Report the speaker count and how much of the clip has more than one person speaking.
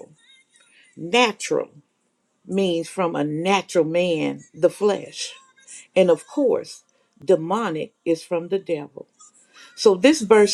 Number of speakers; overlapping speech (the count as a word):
one, no overlap